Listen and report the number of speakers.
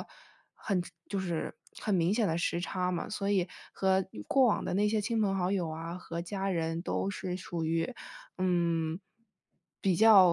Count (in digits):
1